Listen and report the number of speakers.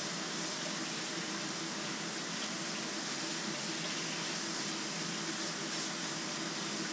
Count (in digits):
0